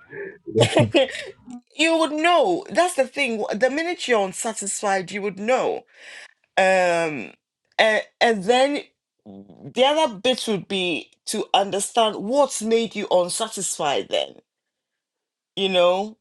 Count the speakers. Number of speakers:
one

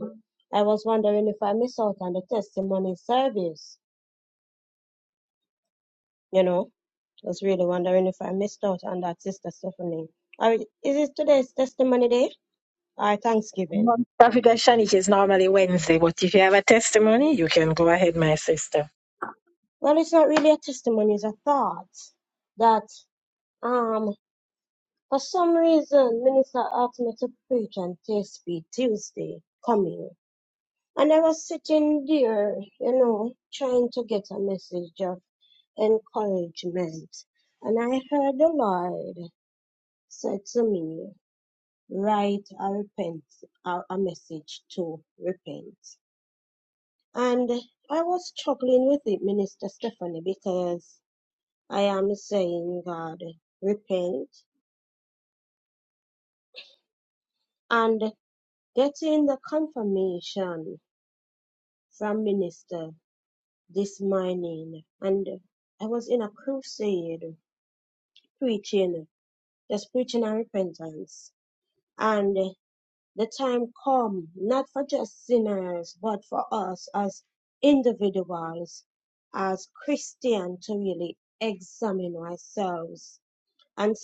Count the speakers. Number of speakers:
two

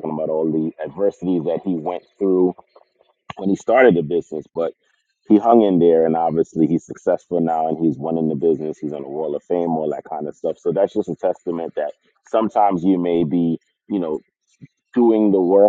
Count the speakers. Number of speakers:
one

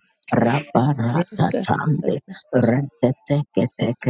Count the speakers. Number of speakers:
two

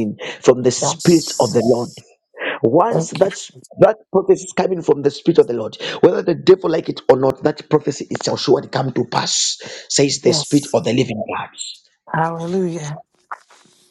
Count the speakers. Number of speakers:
two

